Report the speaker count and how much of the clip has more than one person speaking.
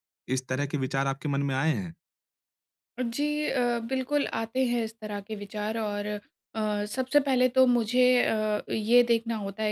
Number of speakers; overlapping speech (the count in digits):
2, no overlap